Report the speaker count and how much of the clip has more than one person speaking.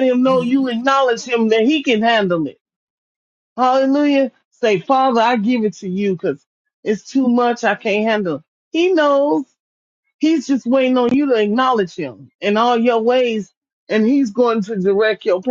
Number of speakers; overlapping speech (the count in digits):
1, no overlap